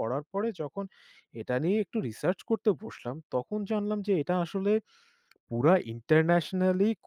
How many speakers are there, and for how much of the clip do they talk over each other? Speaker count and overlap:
one, no overlap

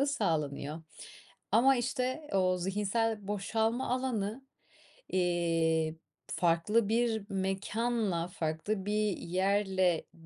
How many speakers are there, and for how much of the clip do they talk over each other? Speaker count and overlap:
one, no overlap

